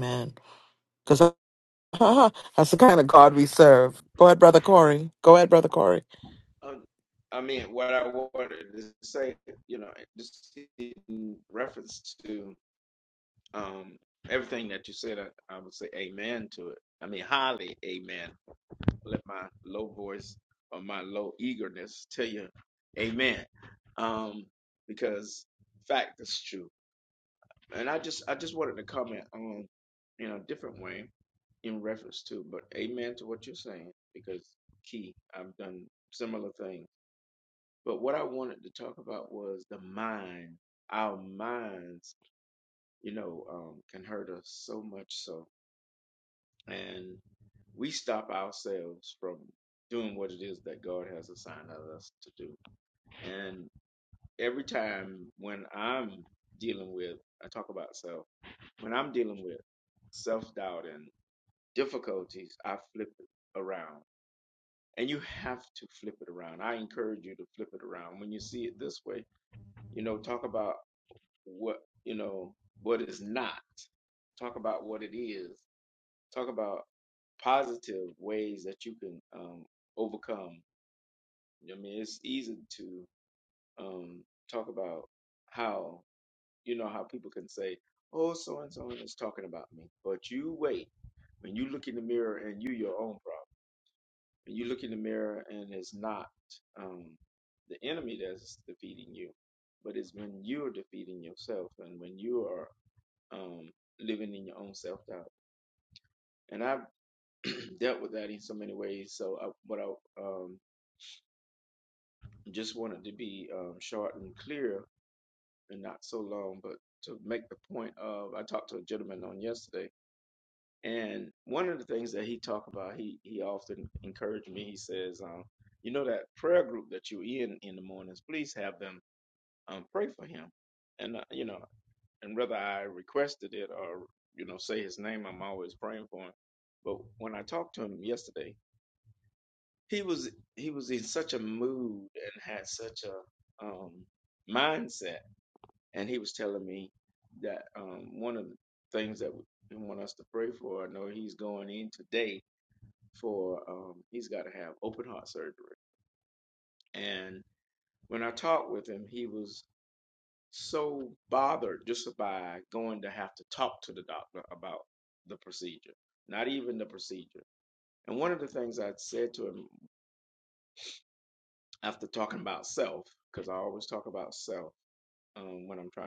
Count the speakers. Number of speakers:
two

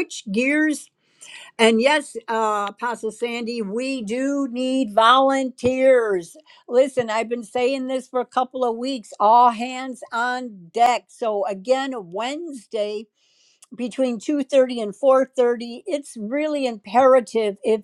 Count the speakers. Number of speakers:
one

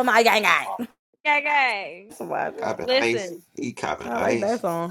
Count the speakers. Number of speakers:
three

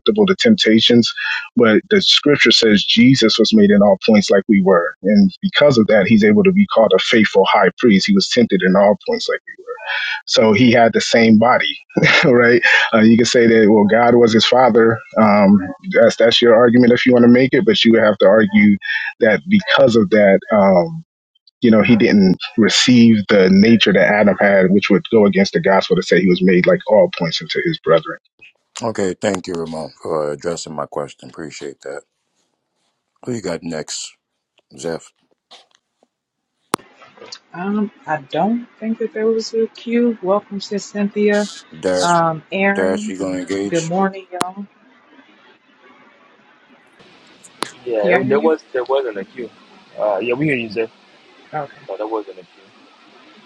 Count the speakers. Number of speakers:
four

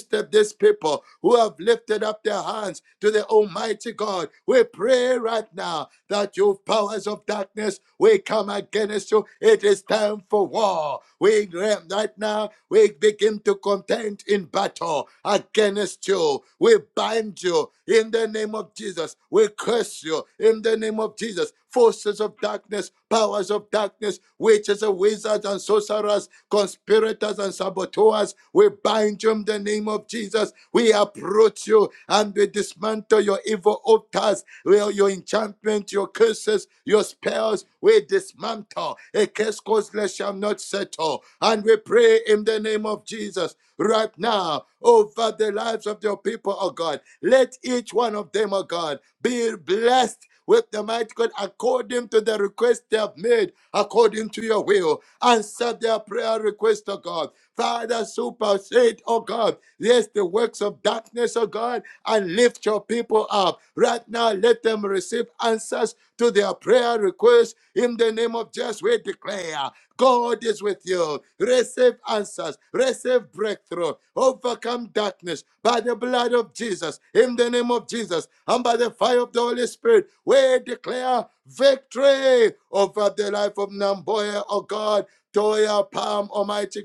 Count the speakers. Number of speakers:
one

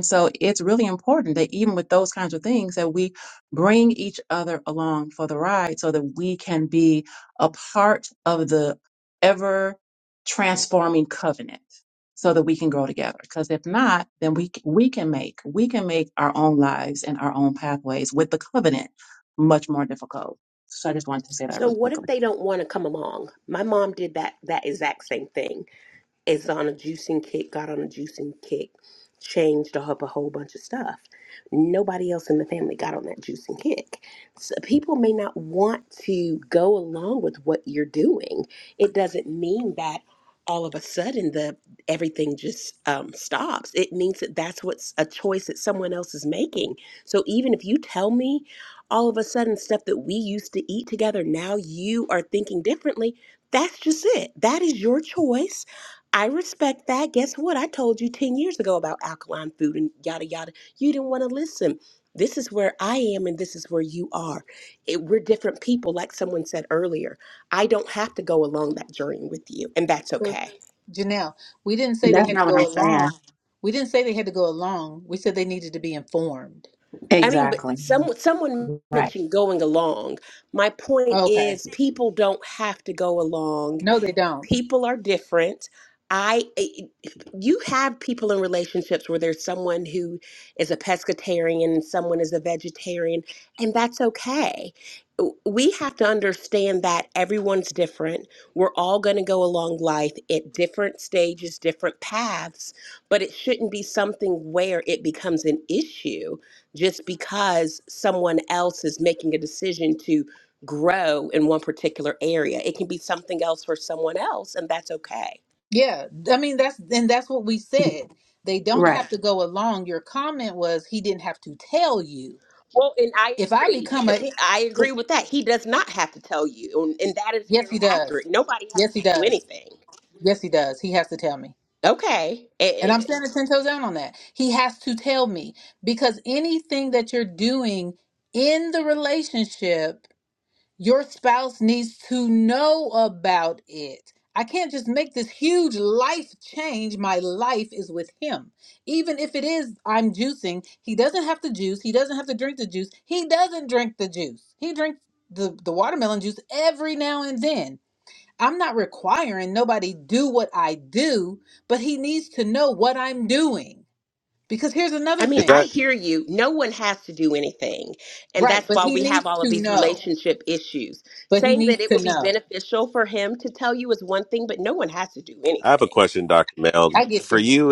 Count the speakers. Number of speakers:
four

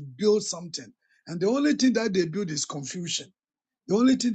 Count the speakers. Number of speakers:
one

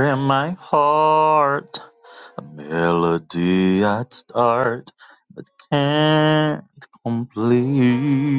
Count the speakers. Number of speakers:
one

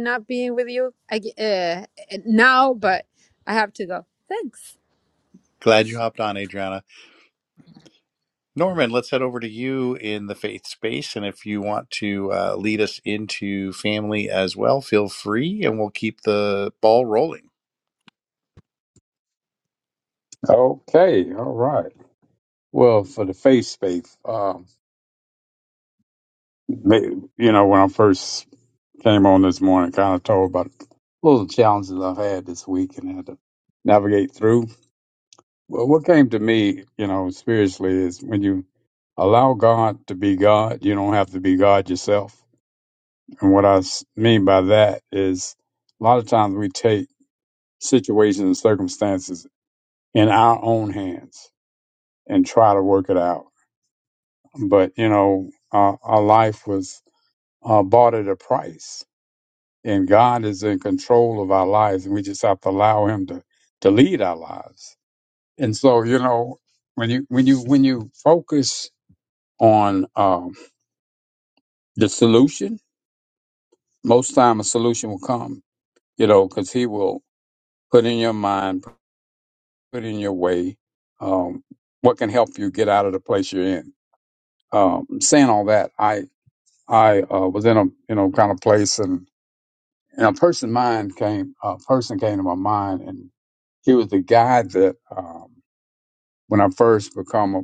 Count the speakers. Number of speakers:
three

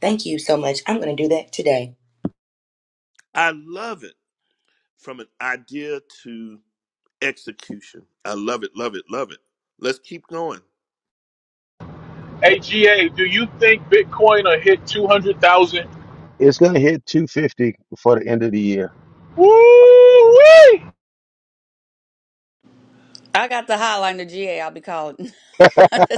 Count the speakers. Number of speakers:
five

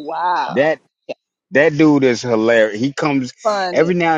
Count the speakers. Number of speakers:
two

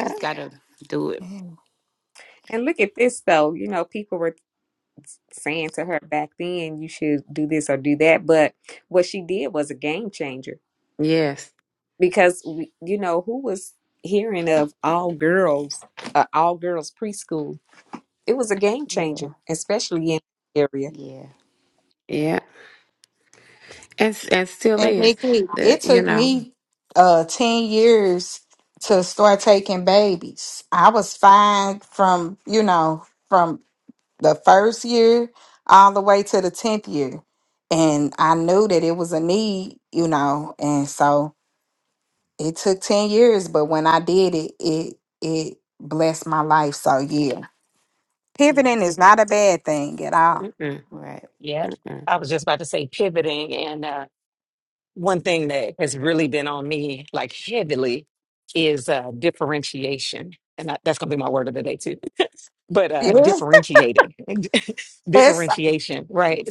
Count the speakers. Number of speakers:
five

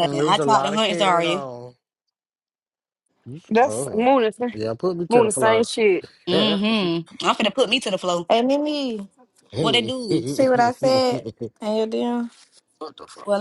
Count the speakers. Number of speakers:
four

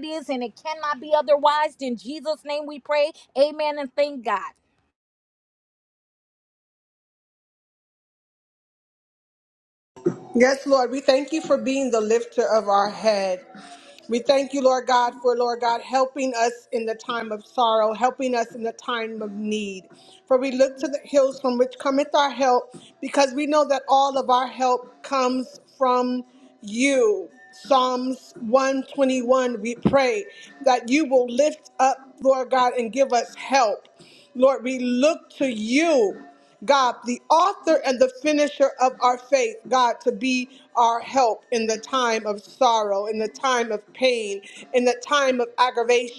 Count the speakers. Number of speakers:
two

